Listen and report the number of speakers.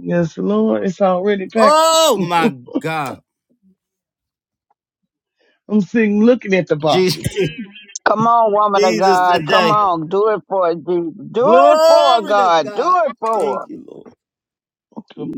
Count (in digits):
3